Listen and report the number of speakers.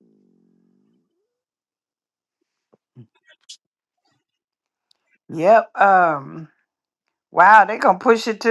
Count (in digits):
1